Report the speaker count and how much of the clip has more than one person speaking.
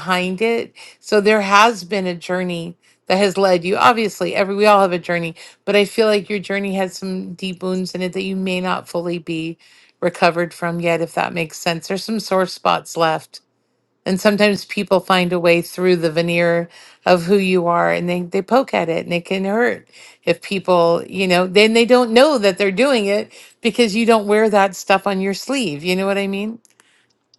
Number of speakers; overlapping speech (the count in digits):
1, no overlap